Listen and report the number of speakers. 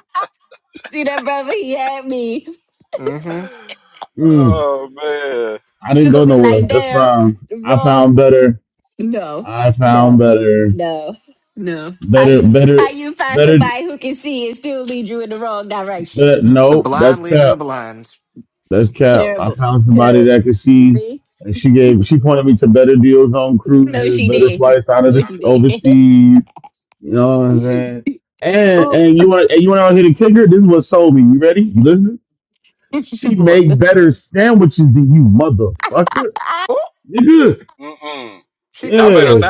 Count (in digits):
4